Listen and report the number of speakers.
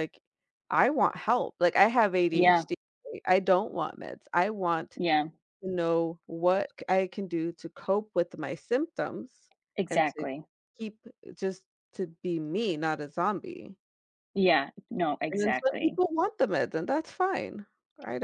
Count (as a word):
two